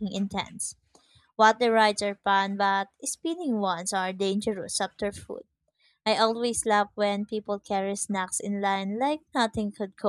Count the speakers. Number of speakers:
one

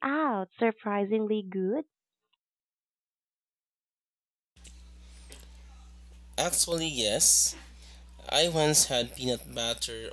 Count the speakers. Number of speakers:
two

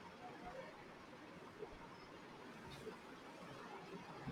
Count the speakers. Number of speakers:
zero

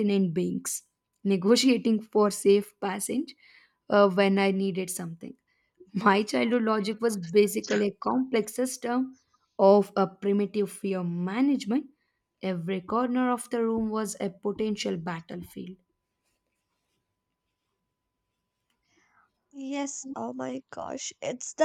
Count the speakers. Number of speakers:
two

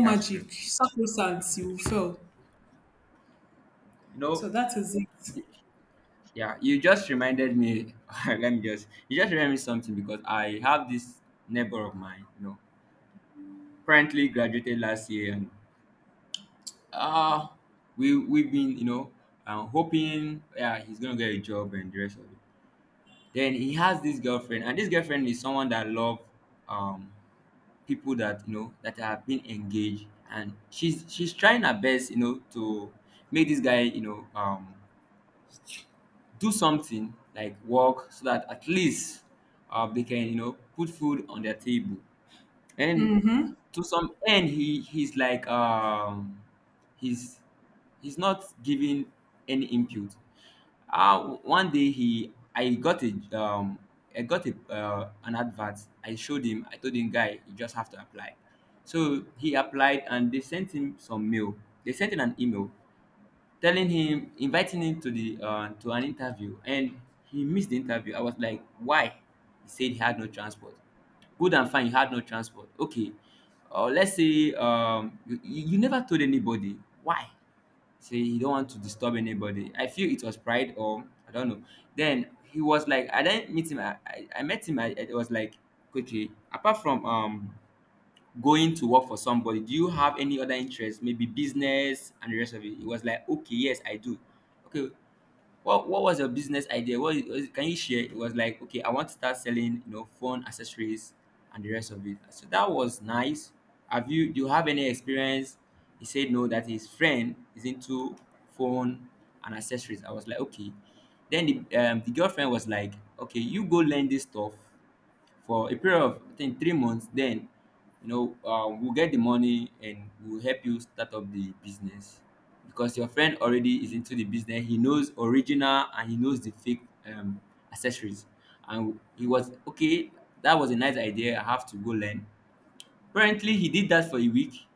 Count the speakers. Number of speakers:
two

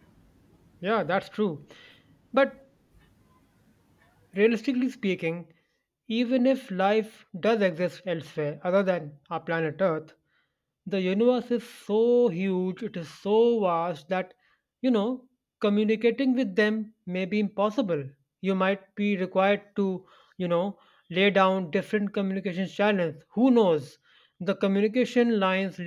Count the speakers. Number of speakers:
one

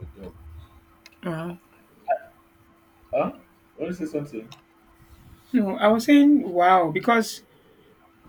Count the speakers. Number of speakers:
two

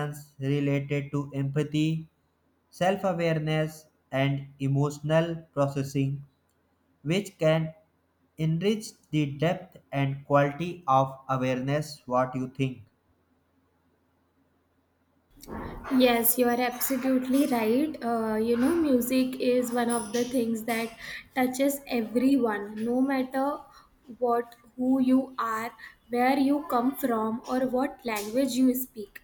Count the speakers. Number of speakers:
two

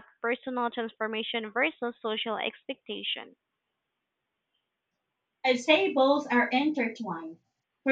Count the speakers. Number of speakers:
two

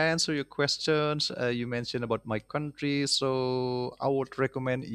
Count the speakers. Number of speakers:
one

